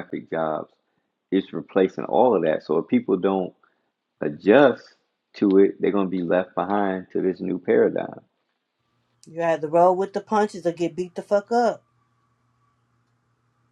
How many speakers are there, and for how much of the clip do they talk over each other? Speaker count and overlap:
two, no overlap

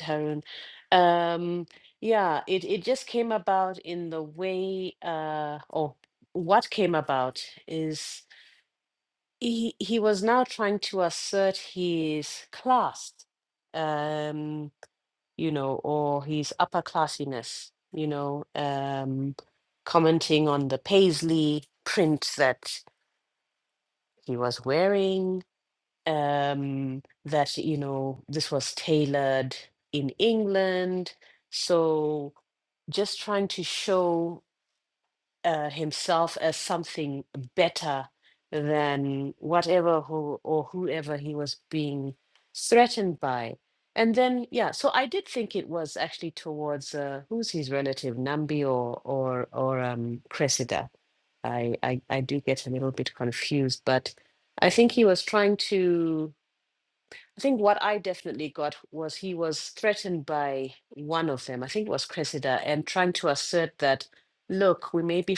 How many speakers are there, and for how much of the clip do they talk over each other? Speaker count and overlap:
one, no overlap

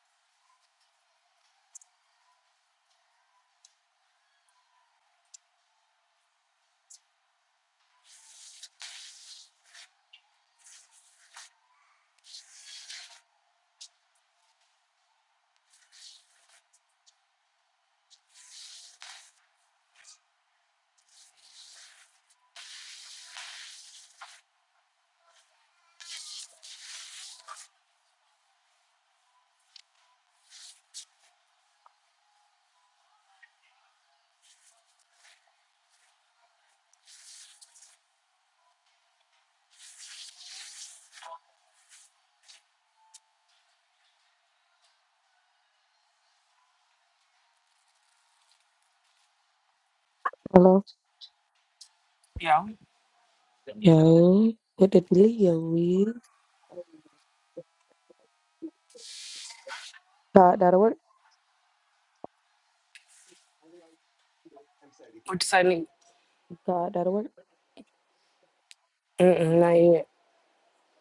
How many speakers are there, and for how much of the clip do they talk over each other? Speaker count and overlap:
two, no overlap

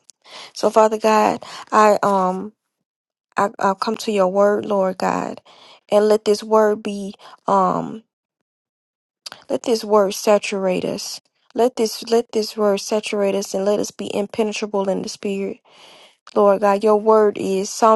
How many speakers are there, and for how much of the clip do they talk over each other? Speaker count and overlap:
one, no overlap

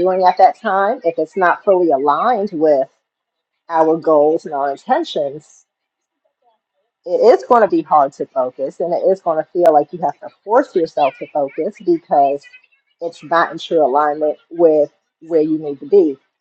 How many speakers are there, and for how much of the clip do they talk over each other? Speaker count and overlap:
one, no overlap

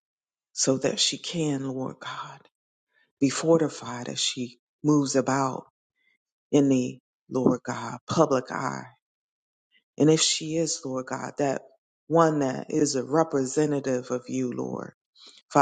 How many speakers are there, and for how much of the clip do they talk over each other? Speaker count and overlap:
one, no overlap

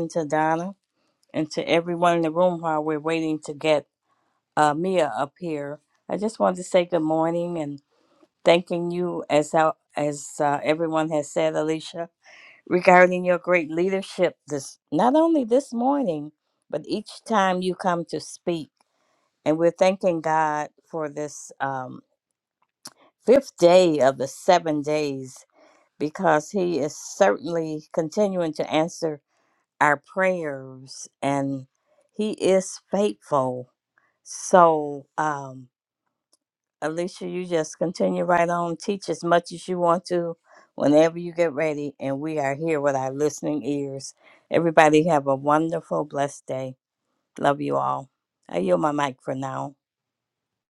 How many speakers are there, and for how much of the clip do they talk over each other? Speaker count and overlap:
one, no overlap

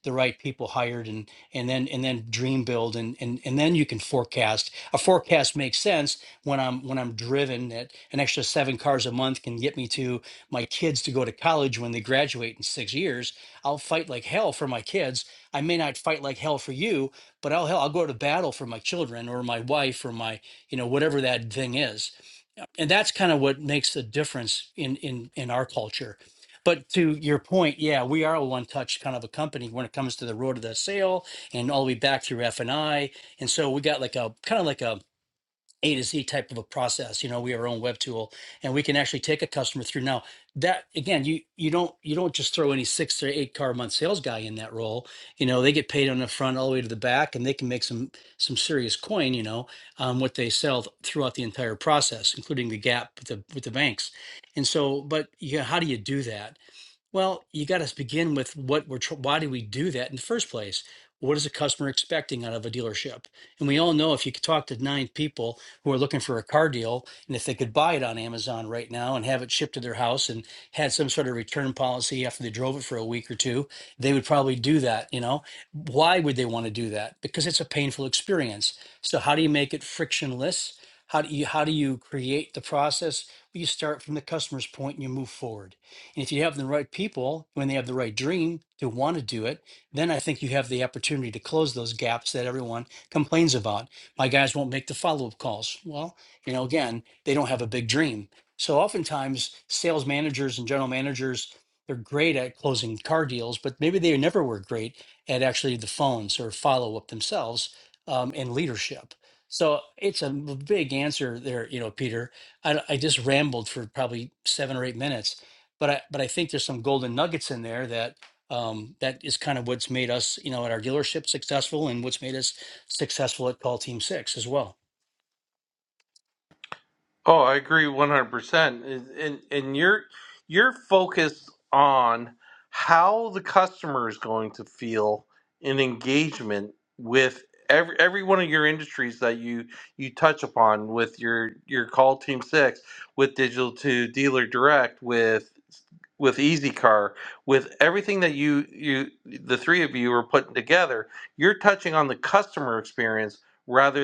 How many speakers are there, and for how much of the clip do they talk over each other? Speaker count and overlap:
two, no overlap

